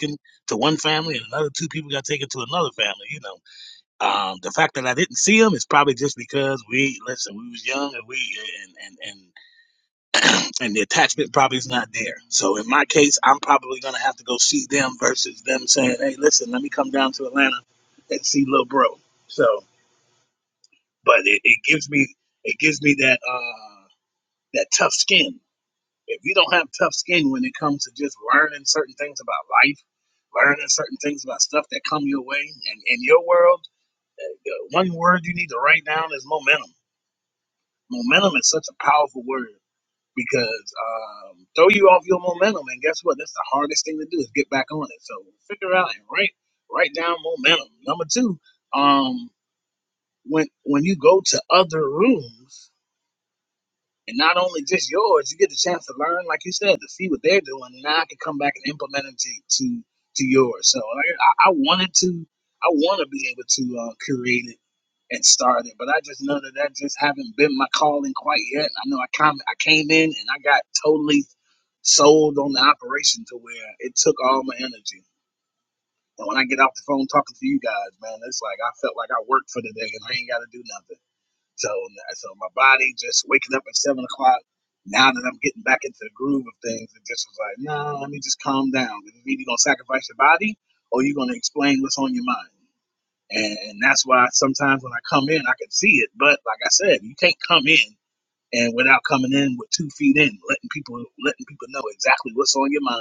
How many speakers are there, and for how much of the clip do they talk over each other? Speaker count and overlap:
1, no overlap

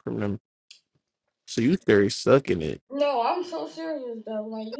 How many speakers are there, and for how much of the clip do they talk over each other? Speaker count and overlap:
2, no overlap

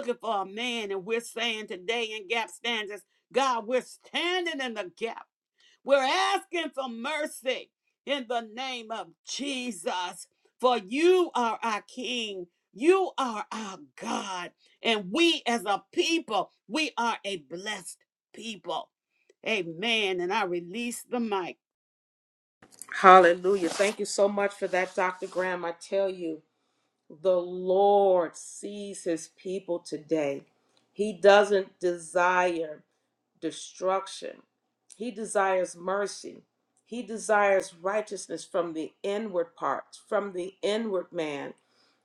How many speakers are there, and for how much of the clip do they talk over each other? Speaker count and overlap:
2, no overlap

